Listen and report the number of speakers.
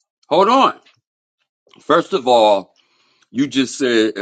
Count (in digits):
1